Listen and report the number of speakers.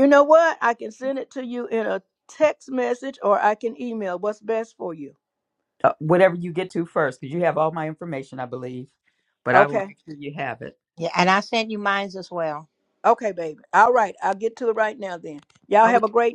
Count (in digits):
3